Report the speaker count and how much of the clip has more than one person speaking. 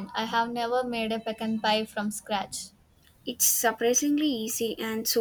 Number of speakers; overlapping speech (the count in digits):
2, no overlap